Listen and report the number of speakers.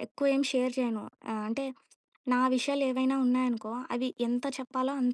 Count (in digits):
1